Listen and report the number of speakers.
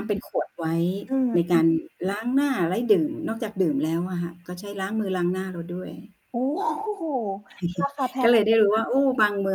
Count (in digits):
2